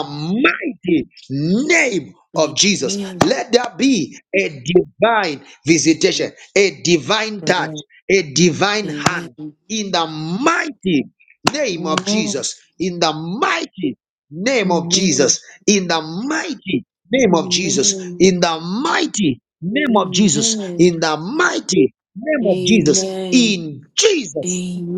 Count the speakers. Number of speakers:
2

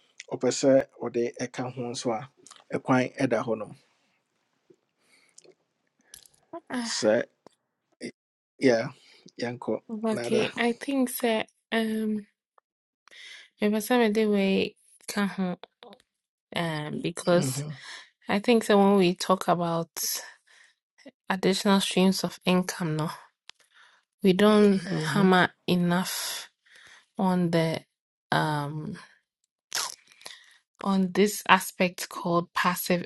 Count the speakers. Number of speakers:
2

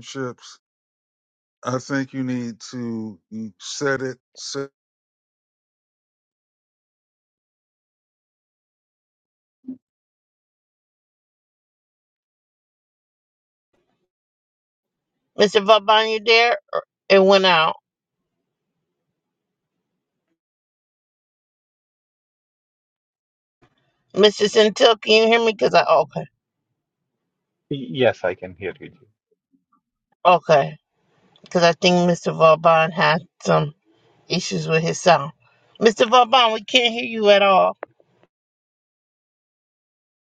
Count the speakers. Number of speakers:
3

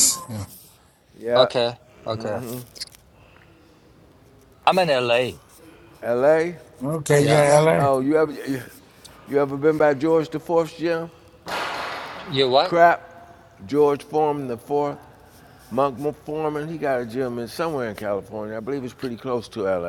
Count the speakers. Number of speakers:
3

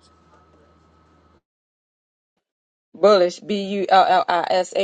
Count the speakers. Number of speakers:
1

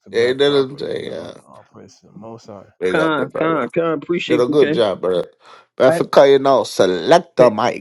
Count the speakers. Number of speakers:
3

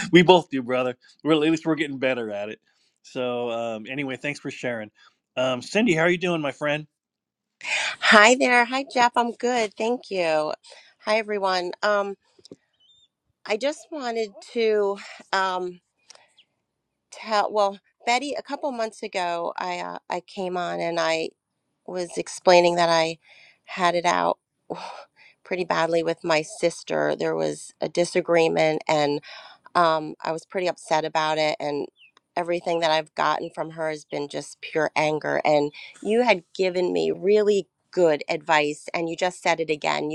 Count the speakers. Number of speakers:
2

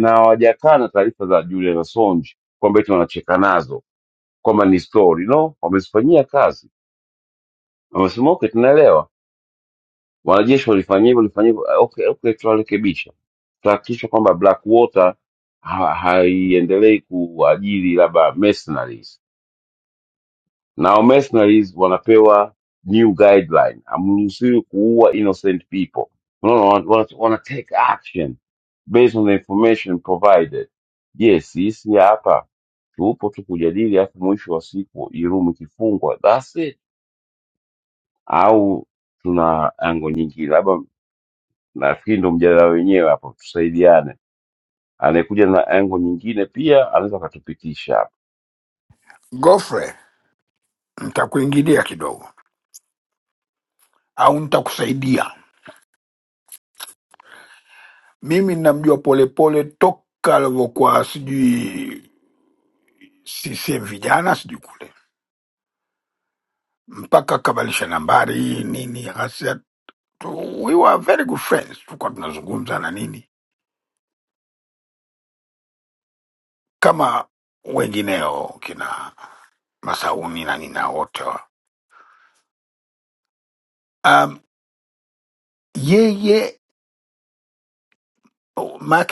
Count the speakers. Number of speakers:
2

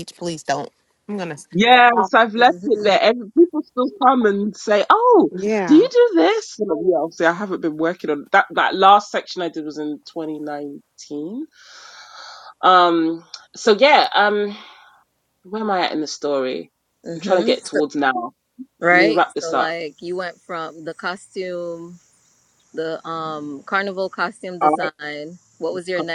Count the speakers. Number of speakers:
3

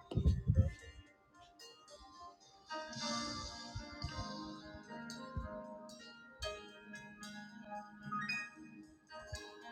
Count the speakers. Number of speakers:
0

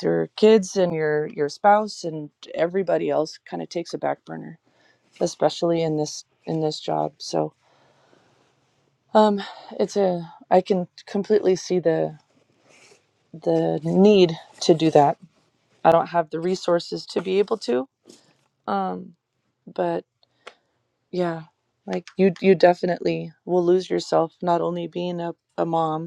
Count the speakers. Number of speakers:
1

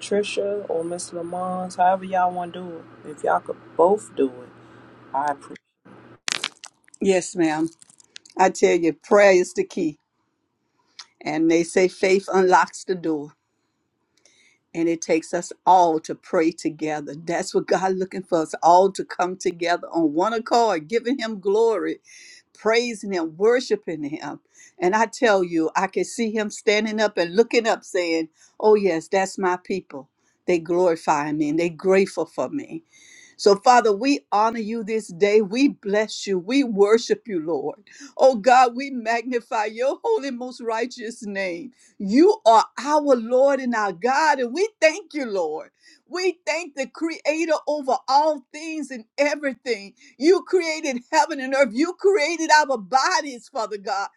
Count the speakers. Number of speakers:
2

